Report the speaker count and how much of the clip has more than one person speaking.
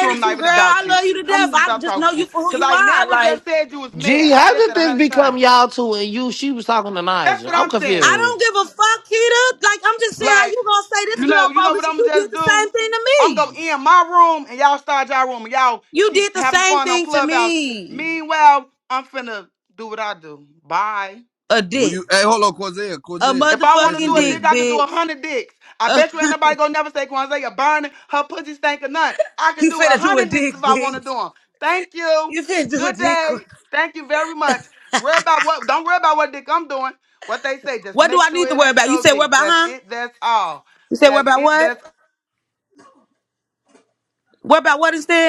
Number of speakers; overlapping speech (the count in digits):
4, about 35%